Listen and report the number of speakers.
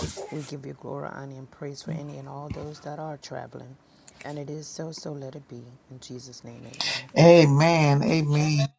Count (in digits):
2